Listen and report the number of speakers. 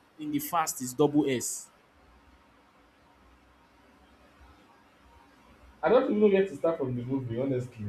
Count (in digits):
2